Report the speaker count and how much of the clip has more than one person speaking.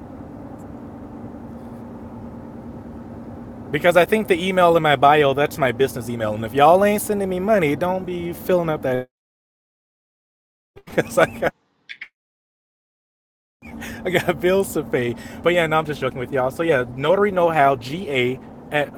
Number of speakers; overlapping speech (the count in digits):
1, no overlap